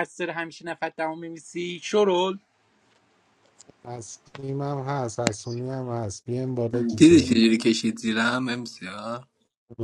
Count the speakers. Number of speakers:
three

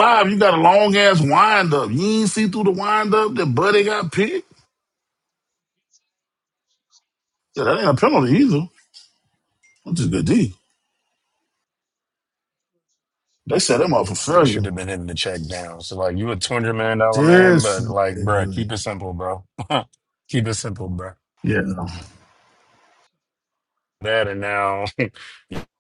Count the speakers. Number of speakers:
two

